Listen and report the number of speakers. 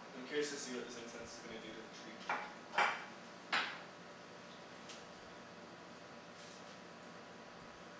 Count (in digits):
1